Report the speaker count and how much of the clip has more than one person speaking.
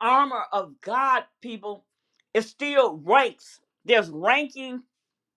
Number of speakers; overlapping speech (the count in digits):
1, no overlap